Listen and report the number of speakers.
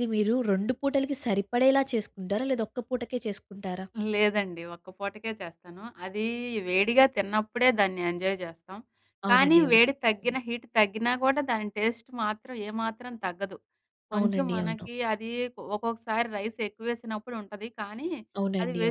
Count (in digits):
2